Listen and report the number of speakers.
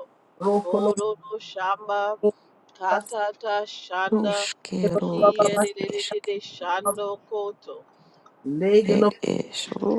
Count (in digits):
3